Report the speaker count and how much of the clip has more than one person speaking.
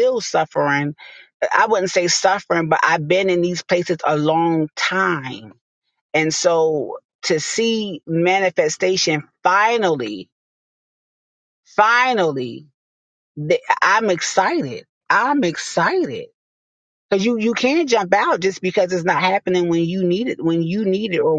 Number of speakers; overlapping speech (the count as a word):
one, no overlap